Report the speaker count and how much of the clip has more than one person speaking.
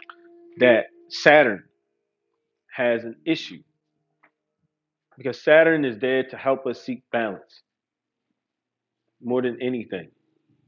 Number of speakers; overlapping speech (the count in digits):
1, no overlap